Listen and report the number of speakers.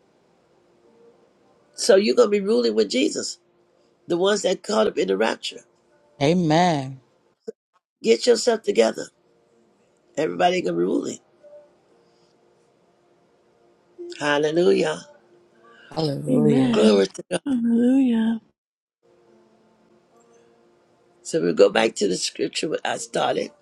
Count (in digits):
3